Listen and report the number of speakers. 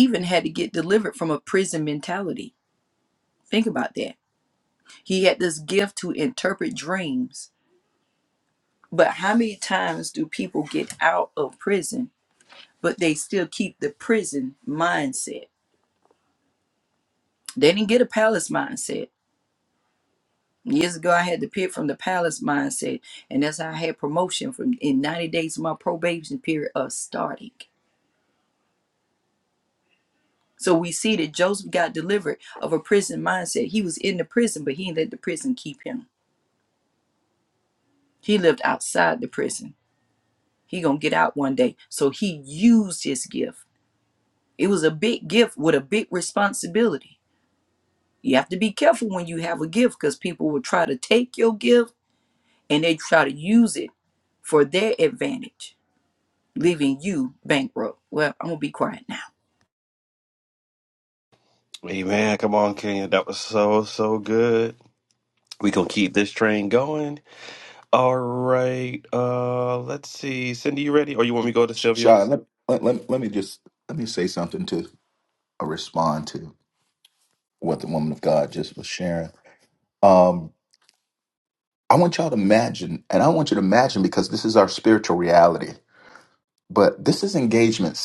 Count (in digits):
3